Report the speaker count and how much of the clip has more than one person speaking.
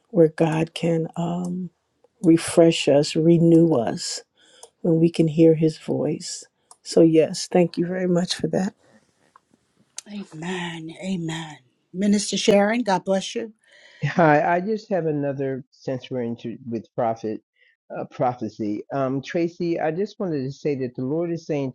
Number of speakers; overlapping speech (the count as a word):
three, no overlap